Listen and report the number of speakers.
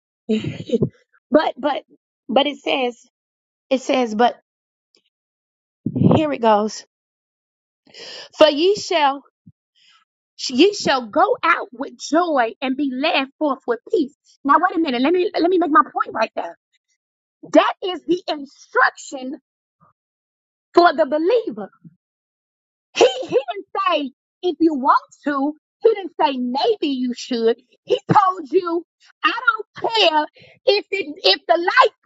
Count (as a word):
one